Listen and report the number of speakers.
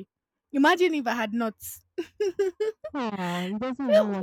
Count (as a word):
two